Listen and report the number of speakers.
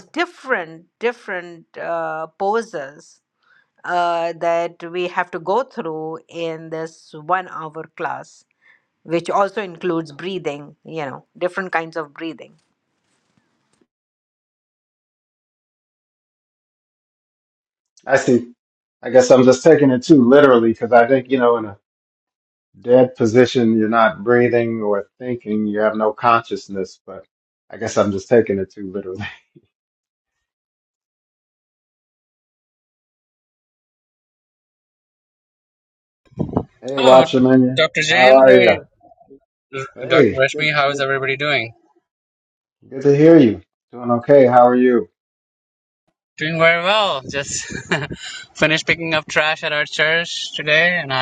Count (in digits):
3